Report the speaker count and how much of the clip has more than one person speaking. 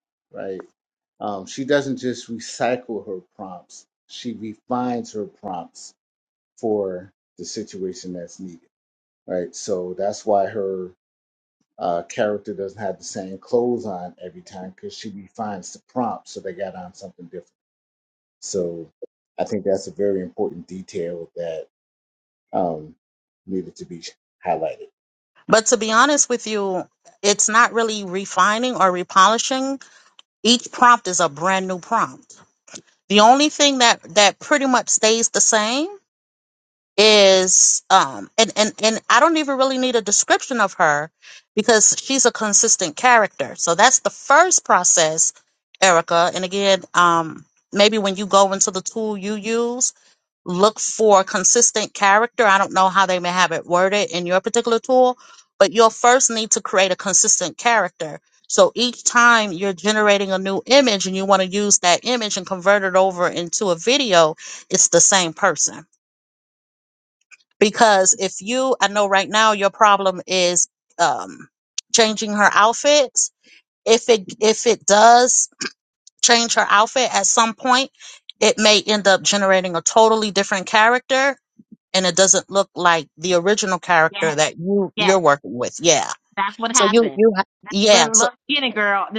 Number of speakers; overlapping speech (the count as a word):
three, about 1%